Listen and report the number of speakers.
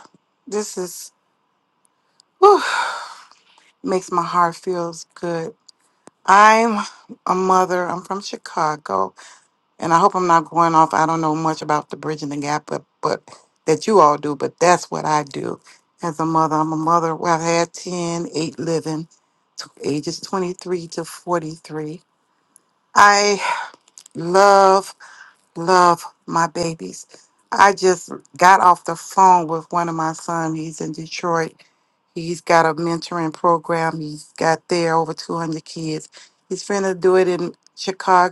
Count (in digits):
1